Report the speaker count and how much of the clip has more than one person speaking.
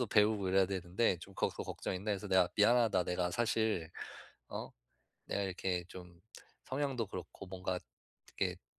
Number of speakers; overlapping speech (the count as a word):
one, no overlap